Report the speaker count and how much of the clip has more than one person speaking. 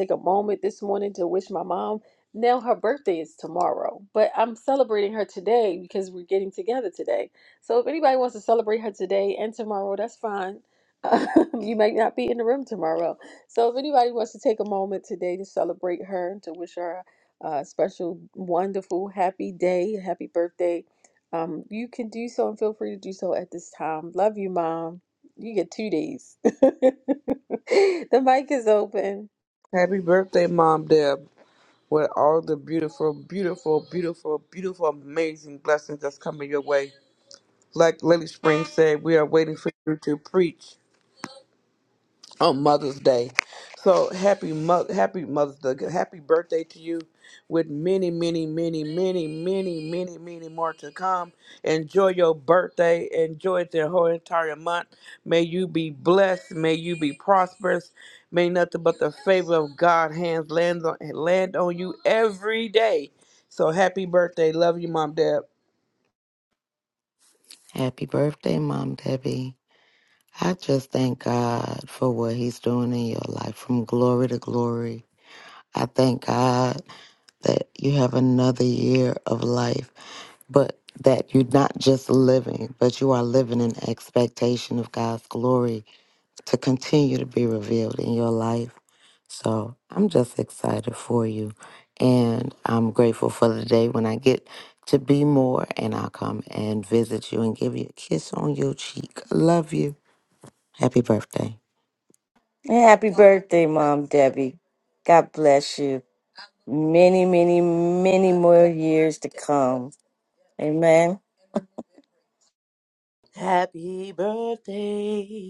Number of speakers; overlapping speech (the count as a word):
five, no overlap